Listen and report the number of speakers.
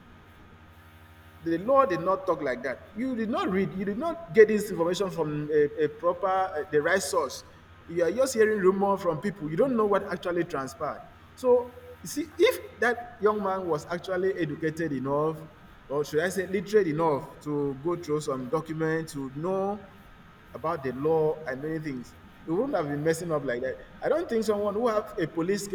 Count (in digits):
1